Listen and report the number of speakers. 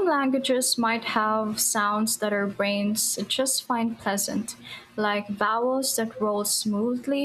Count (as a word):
one